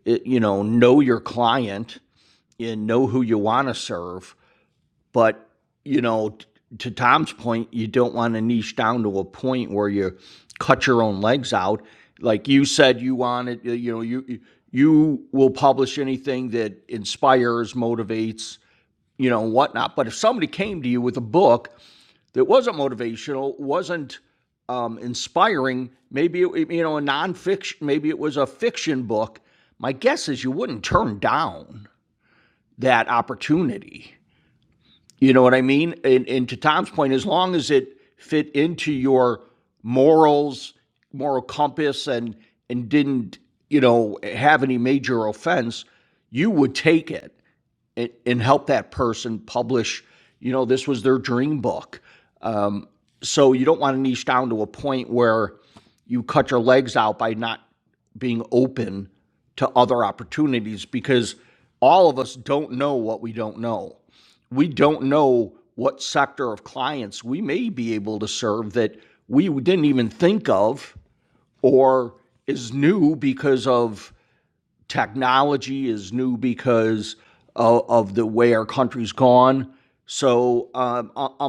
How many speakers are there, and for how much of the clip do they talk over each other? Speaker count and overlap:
1, no overlap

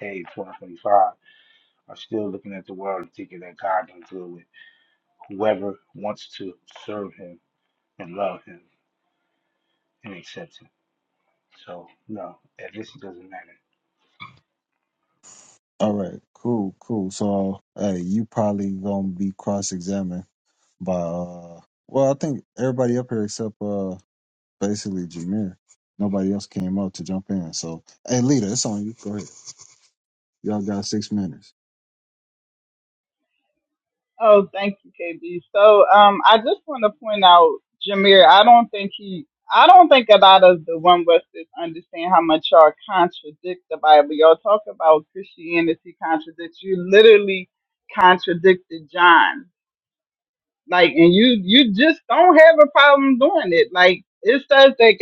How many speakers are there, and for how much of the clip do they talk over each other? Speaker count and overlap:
3, no overlap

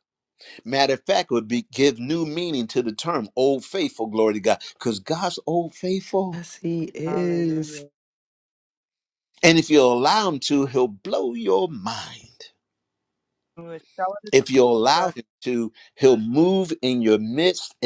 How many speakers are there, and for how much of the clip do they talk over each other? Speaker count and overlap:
3, about 6%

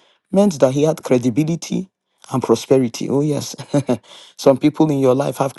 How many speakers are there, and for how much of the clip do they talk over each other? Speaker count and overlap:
1, no overlap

